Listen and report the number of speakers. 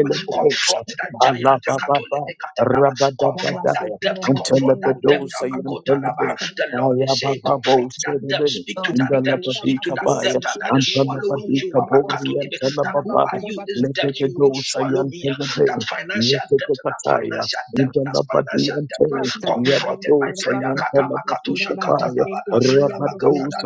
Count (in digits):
3